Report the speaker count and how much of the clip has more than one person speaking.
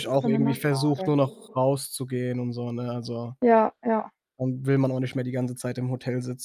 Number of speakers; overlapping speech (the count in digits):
2, about 18%